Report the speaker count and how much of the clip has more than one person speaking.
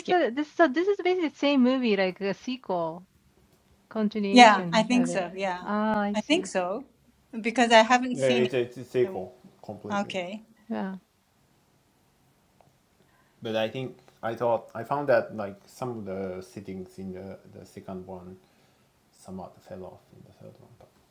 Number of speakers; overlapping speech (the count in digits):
3, about 12%